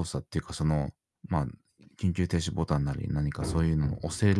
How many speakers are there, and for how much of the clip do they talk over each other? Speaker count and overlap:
one, no overlap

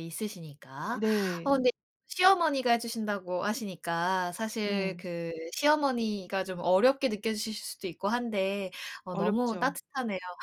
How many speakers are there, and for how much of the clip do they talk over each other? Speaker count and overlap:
two, about 9%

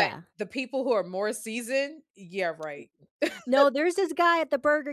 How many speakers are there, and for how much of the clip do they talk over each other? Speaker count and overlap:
two, about 4%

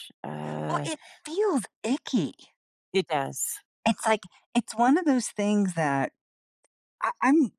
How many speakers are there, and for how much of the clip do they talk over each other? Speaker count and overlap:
two, about 3%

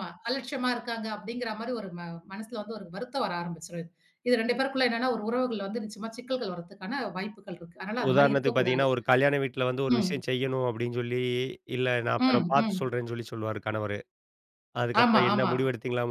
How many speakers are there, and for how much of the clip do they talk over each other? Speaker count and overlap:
two, about 15%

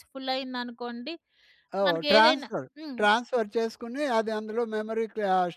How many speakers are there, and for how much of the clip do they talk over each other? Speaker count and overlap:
two, about 22%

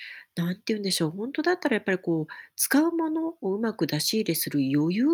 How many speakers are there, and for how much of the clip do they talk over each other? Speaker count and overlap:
one, no overlap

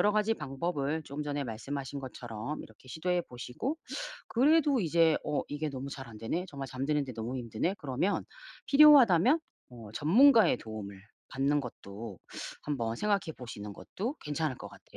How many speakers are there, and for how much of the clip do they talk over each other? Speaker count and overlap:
one, no overlap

